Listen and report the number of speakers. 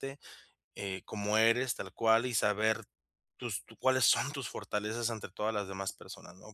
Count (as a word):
one